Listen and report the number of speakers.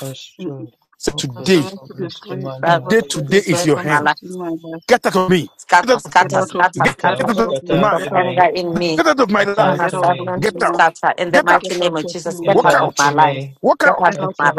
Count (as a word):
four